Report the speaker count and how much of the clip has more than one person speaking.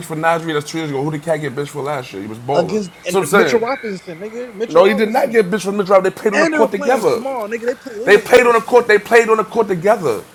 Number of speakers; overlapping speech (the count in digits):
2, about 28%